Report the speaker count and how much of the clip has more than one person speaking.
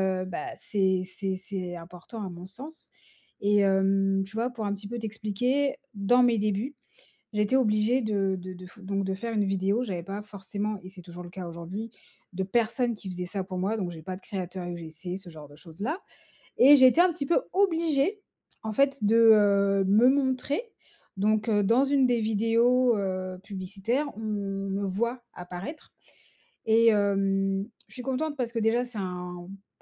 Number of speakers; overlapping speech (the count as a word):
one, no overlap